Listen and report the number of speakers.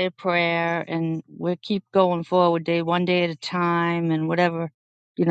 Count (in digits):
1